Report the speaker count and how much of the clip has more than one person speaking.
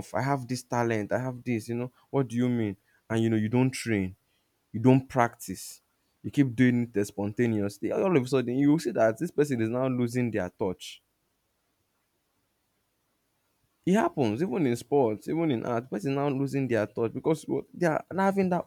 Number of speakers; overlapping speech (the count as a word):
one, no overlap